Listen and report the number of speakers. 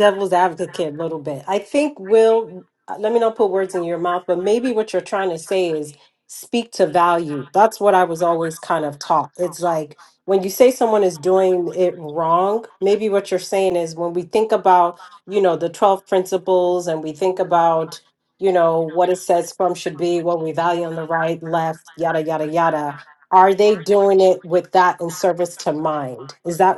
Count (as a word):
one